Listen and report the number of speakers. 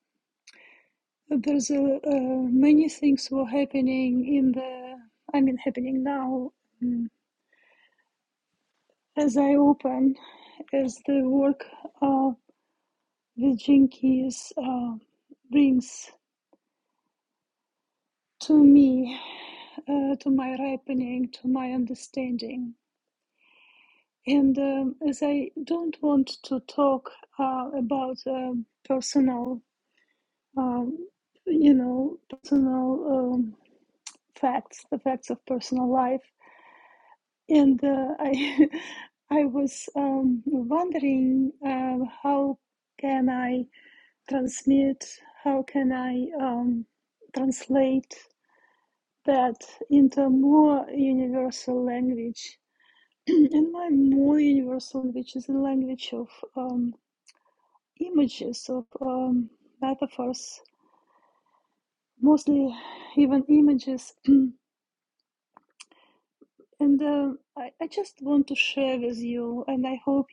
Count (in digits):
1